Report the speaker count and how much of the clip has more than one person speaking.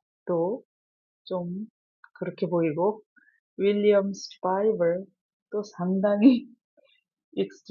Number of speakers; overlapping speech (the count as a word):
one, no overlap